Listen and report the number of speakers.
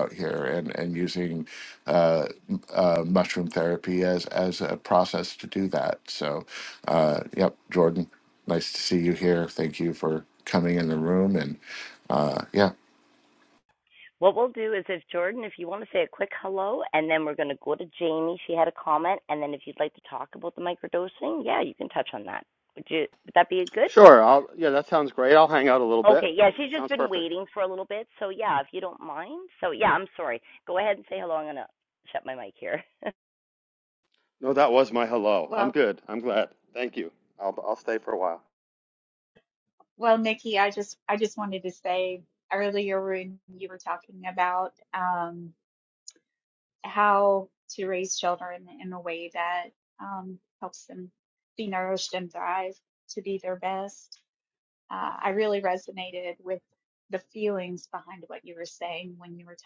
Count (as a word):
four